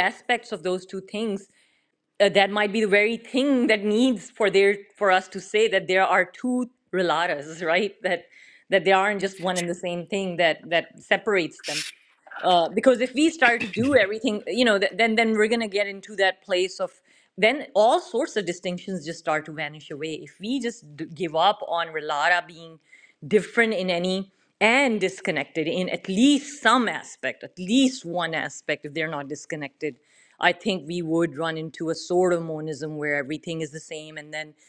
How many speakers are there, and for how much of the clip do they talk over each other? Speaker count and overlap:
1, no overlap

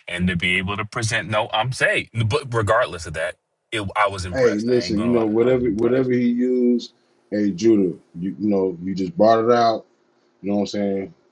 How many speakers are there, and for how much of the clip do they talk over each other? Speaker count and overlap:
2, about 15%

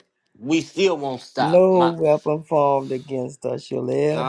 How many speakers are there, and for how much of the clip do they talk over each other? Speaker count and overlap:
2, about 17%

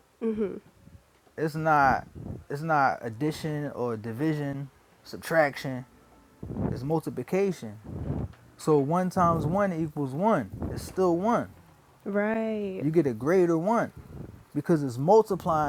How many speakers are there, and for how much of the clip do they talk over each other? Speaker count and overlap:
2, under 1%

